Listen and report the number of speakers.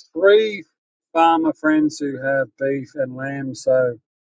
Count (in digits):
1